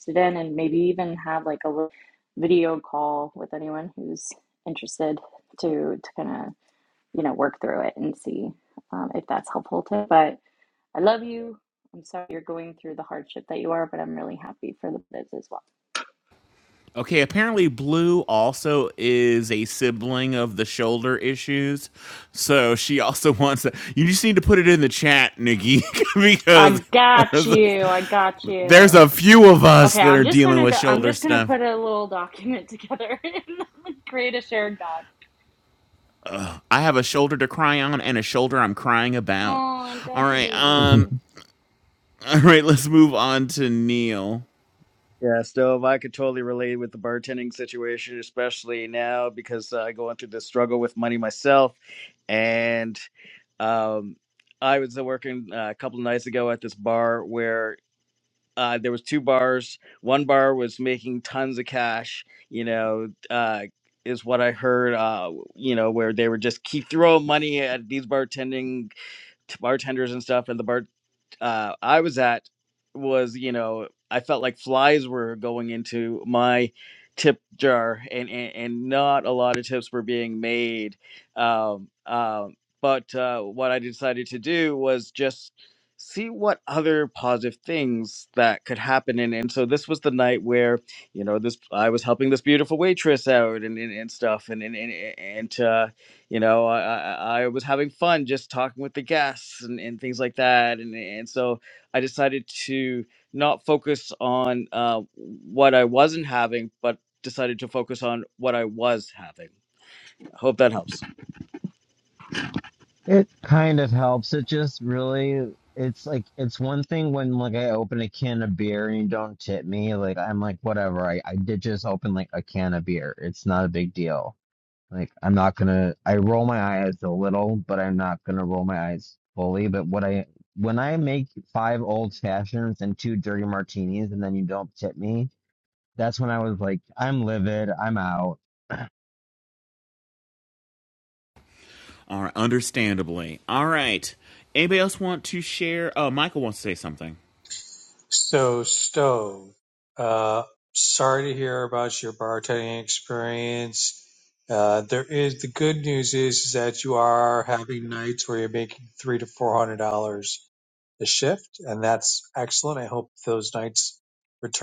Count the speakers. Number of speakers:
5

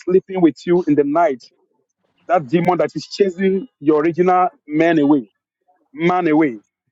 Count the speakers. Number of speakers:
1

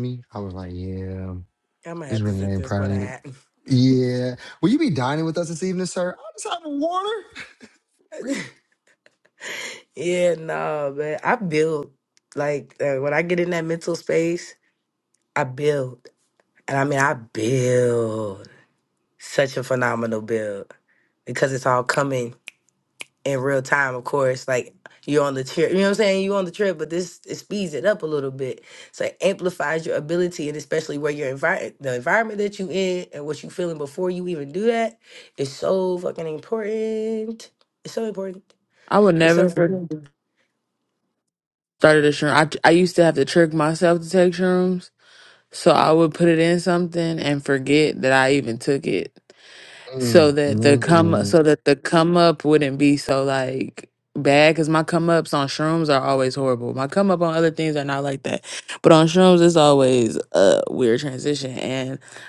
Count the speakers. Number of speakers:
3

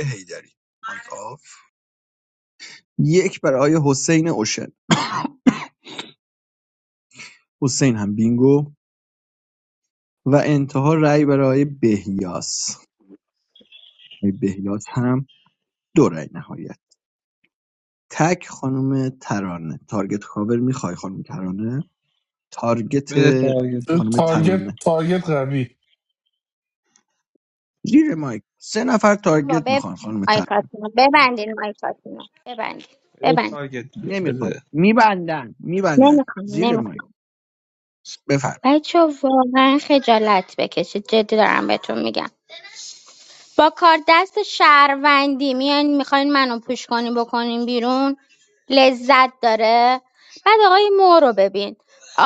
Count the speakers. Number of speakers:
4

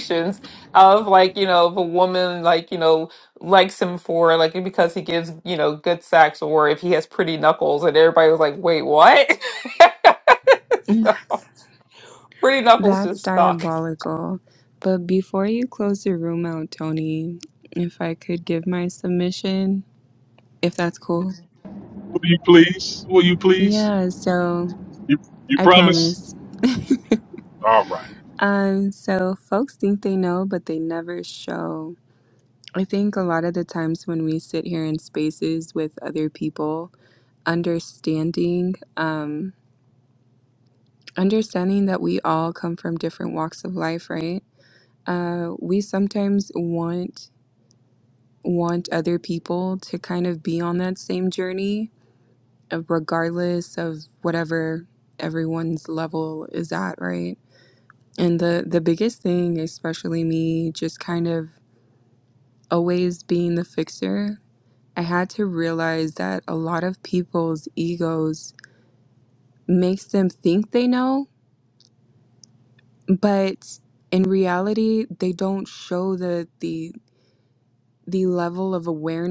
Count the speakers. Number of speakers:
3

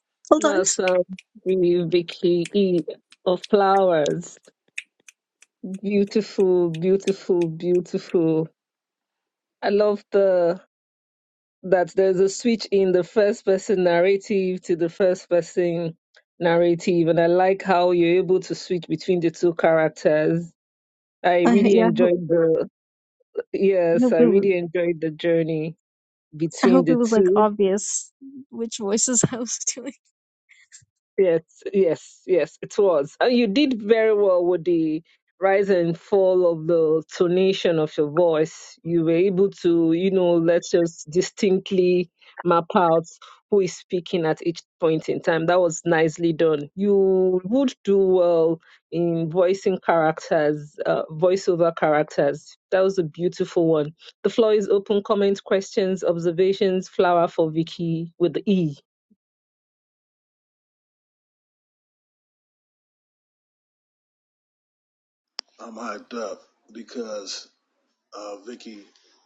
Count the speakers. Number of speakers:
3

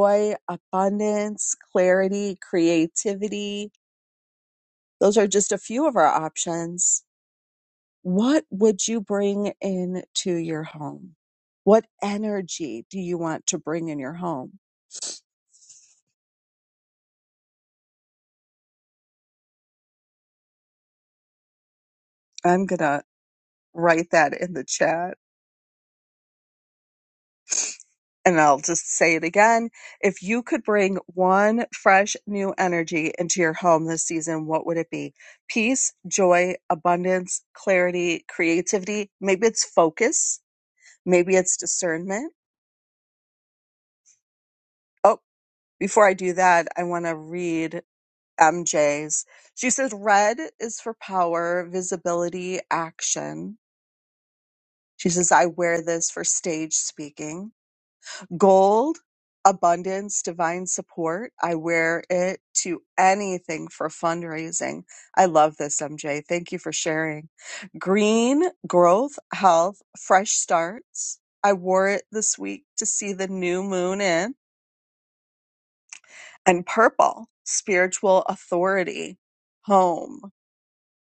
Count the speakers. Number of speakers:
1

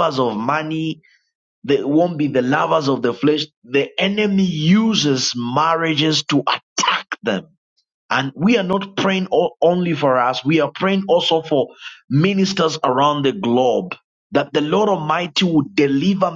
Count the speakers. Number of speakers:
1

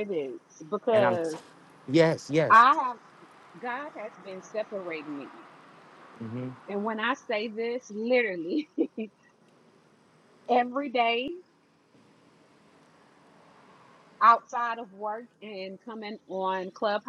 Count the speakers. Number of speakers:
2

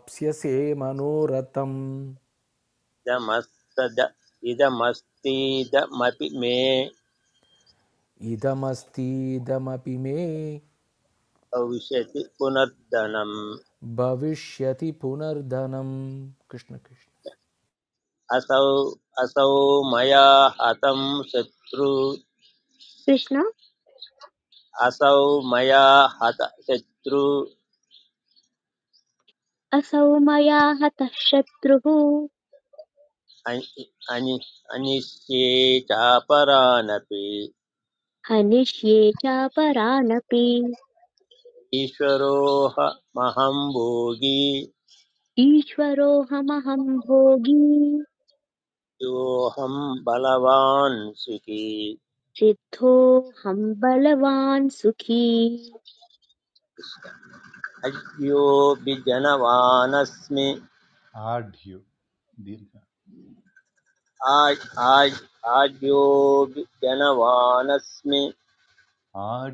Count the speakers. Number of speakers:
4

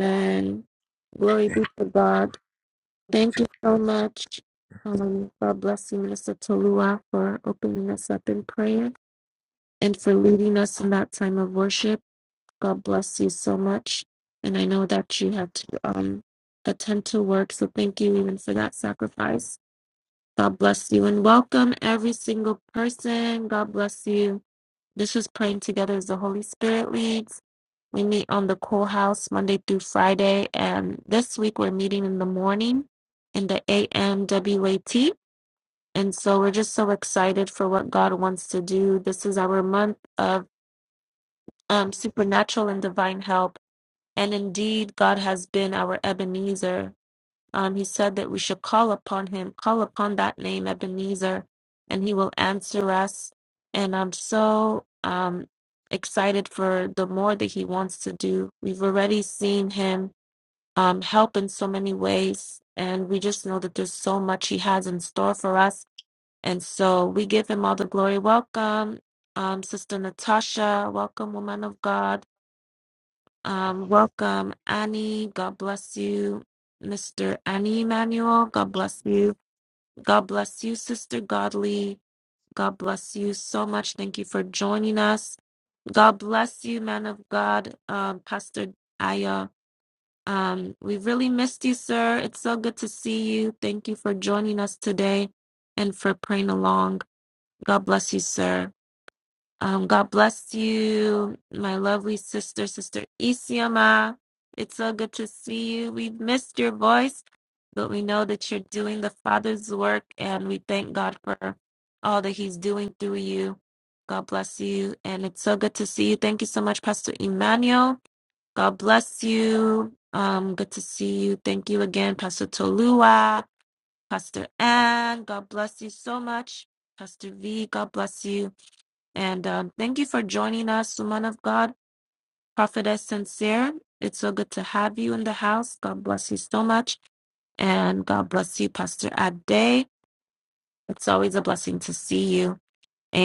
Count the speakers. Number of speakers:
1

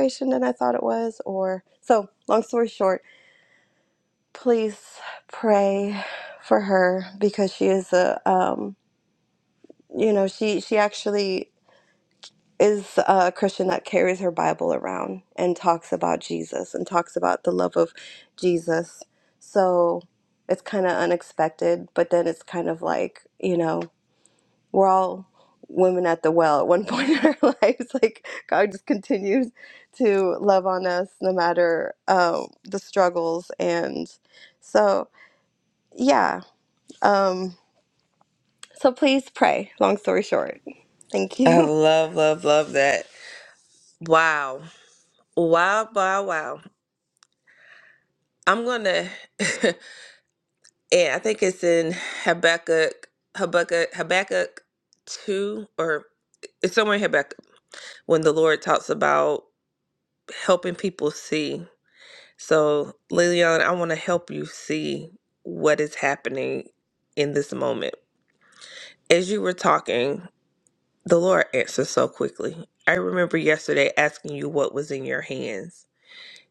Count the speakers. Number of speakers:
2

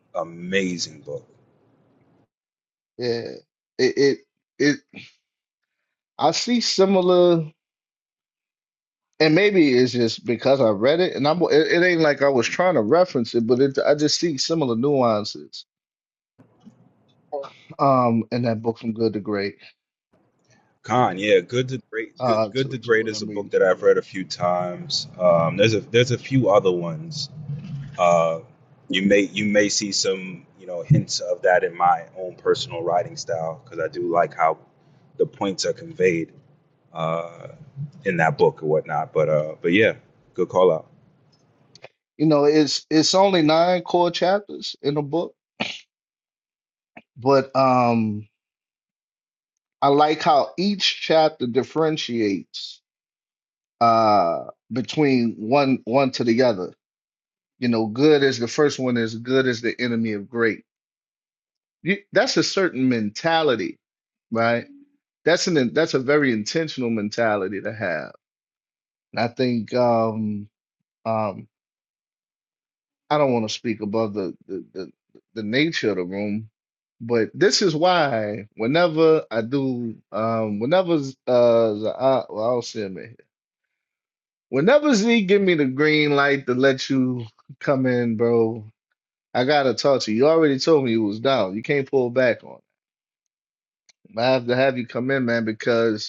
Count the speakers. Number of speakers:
2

